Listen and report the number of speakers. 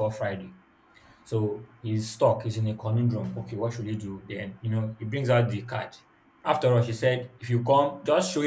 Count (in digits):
1